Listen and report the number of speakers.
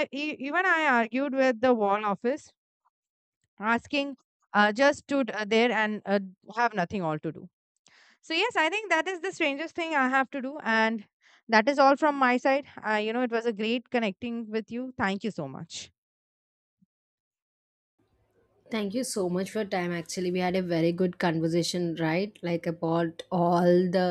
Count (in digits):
2